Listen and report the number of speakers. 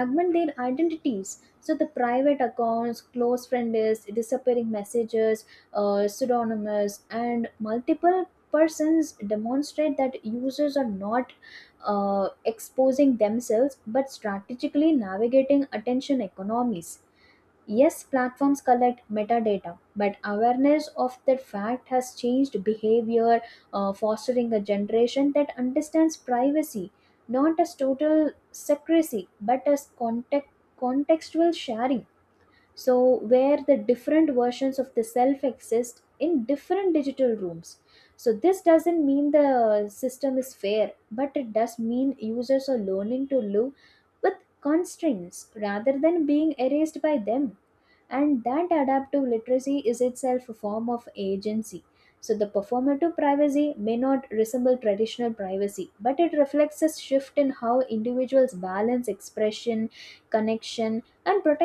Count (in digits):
1